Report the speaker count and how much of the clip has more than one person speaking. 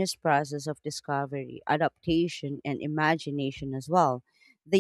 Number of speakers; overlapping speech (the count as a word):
one, no overlap